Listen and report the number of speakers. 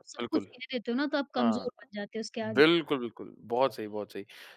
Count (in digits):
2